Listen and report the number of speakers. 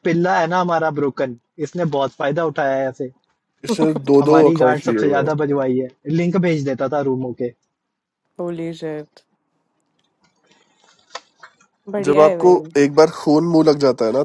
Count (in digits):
3